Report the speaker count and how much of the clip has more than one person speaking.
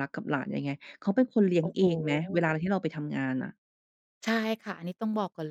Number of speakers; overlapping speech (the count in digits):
2, about 5%